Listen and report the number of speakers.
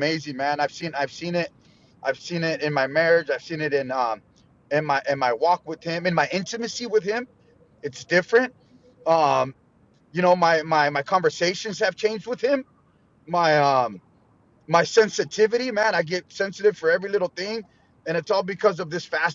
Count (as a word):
one